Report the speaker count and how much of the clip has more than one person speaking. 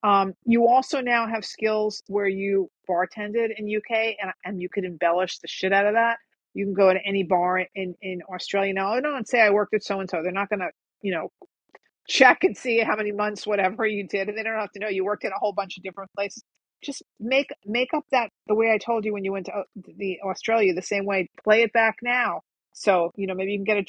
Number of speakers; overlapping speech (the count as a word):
one, no overlap